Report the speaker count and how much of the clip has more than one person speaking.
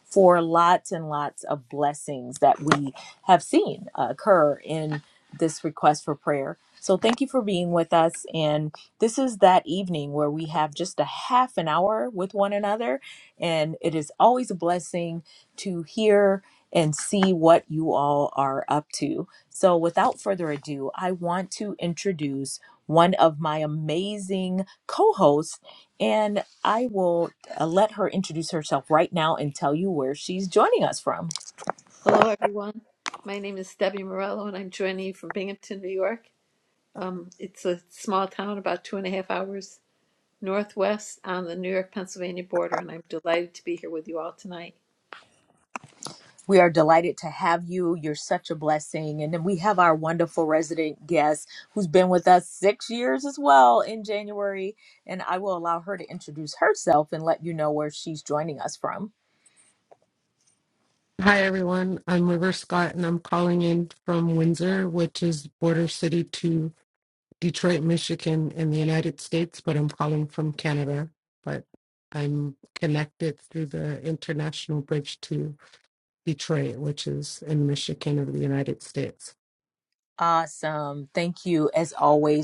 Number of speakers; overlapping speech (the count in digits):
3, no overlap